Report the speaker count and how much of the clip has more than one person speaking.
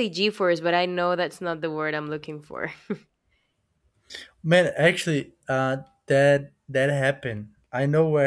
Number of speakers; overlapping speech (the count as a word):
two, no overlap